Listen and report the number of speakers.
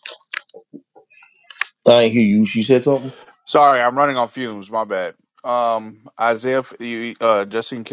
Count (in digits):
2